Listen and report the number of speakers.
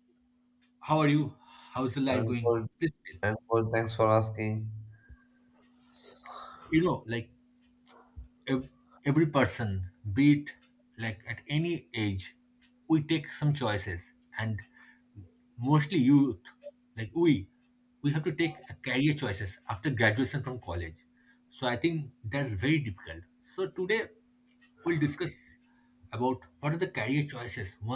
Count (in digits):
2